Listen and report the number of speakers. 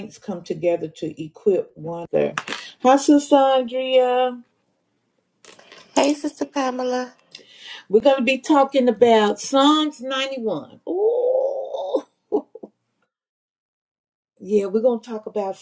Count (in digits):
2